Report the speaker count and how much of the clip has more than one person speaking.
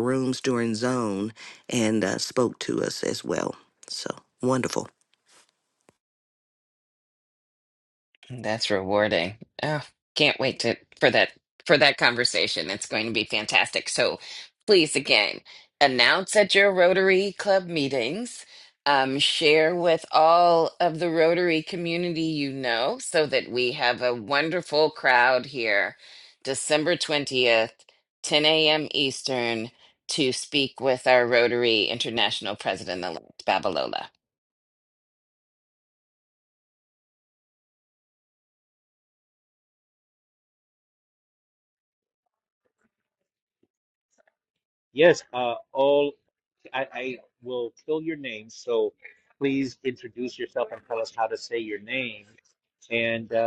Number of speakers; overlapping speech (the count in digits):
3, no overlap